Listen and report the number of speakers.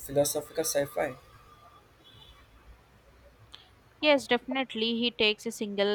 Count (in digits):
2